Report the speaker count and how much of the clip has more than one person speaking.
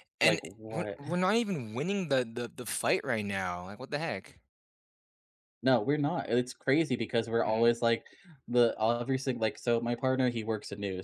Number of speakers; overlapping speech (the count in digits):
2, about 10%